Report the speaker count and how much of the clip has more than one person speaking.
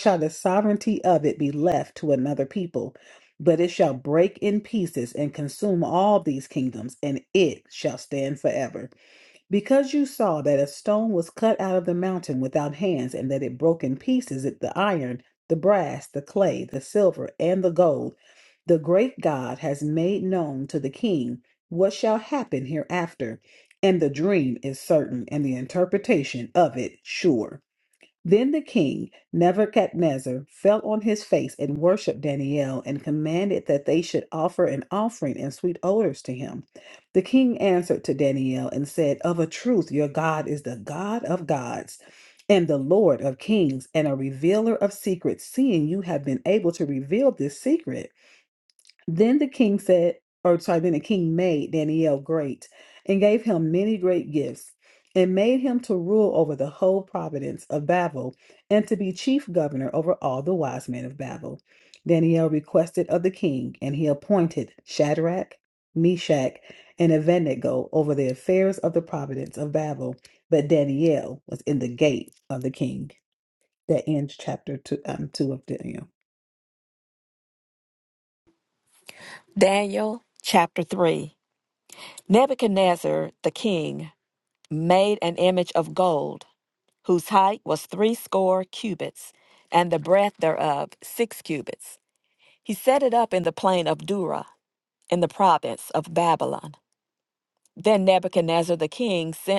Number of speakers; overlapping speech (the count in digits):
2, no overlap